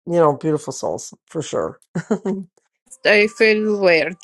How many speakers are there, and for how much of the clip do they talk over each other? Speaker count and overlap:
two, no overlap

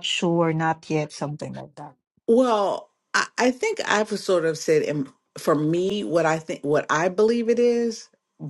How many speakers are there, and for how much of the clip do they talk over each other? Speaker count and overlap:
two, no overlap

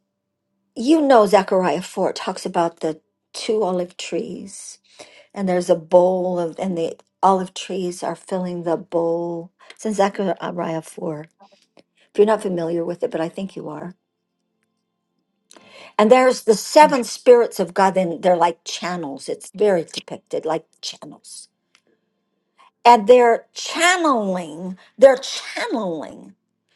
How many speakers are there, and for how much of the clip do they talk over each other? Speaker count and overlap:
one, no overlap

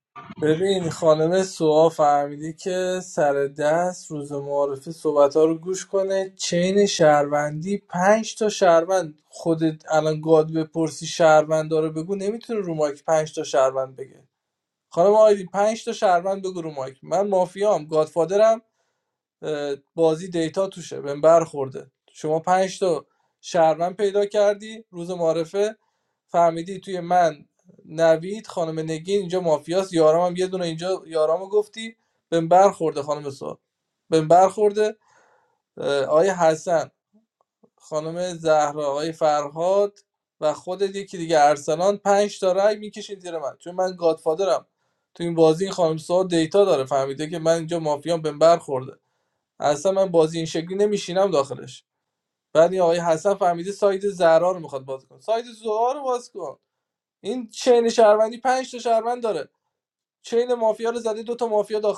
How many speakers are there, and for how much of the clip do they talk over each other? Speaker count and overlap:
one, no overlap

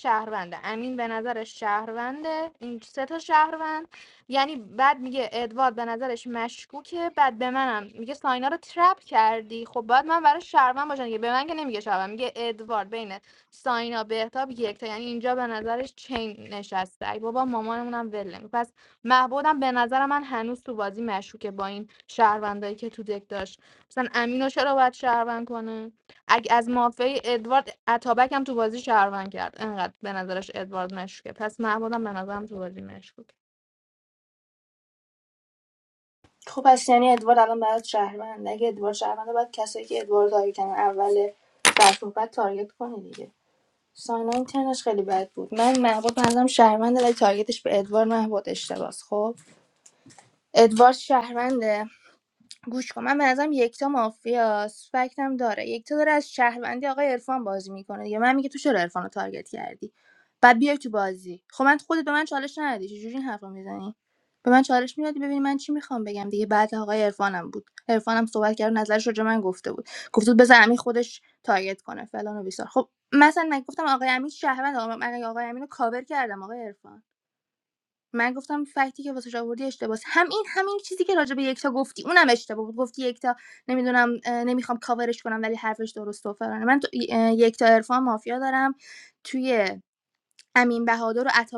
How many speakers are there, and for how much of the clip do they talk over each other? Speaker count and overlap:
two, no overlap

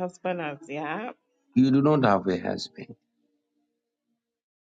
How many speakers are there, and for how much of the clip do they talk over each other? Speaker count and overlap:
two, no overlap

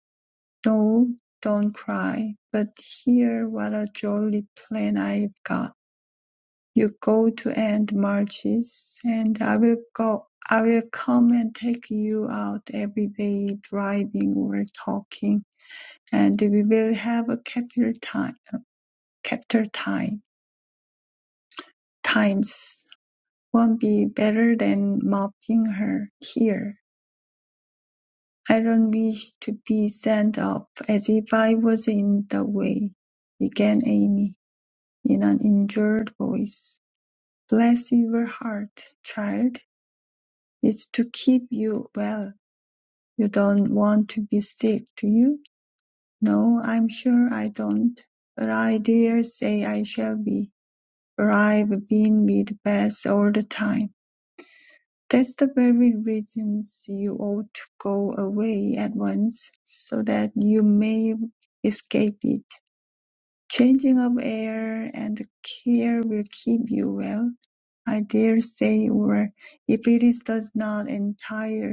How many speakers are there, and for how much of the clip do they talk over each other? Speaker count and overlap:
one, no overlap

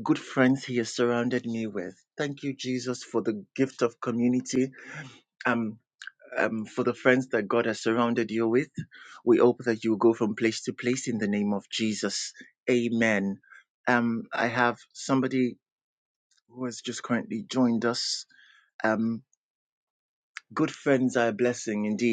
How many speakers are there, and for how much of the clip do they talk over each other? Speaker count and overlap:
one, no overlap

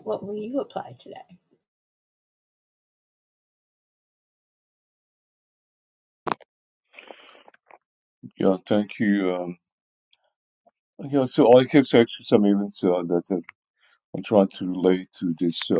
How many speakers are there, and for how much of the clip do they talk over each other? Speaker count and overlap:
two, no overlap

